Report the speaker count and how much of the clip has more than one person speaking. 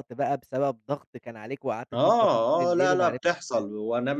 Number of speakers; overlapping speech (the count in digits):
2, about 41%